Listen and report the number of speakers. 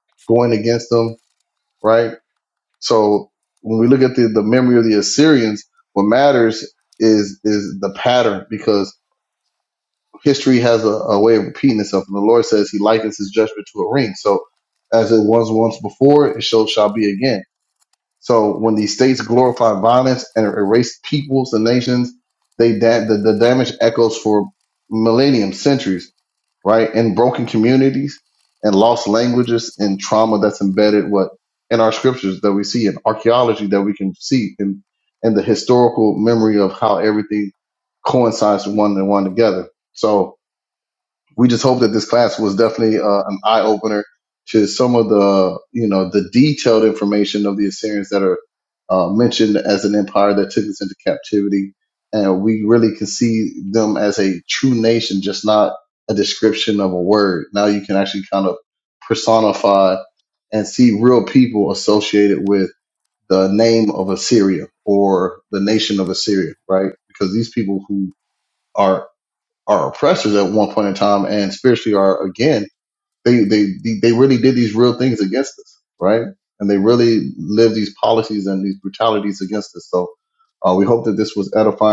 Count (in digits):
1